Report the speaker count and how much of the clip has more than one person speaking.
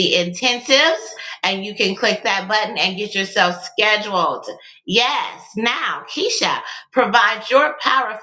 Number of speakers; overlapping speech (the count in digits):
1, no overlap